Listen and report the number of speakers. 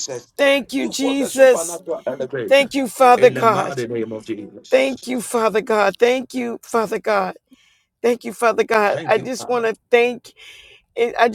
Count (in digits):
2